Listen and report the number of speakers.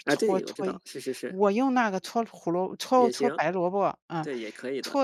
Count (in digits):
2